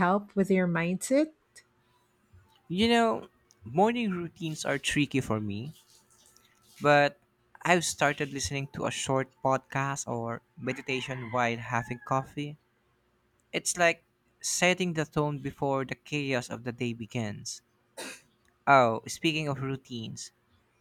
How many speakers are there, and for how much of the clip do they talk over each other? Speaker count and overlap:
2, no overlap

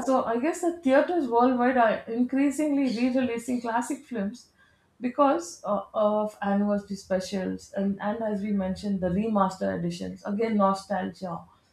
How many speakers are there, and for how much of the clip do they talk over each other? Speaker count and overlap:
1, no overlap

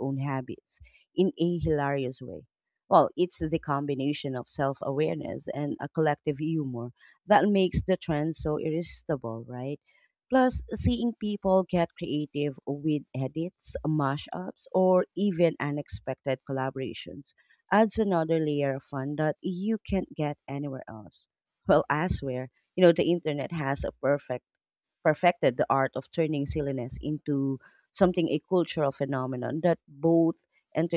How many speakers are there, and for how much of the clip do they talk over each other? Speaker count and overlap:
1, no overlap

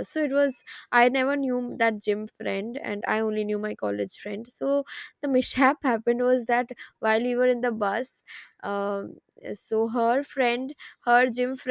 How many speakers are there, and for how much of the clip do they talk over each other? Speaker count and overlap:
1, no overlap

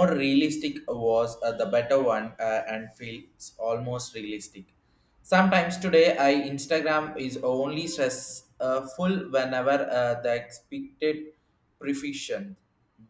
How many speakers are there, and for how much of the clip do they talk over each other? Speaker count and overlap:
1, no overlap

